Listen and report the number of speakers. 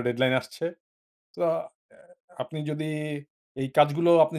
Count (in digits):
1